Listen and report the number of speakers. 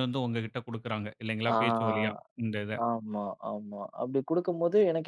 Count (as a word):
two